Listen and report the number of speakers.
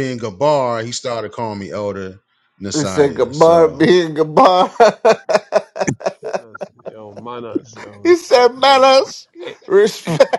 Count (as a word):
three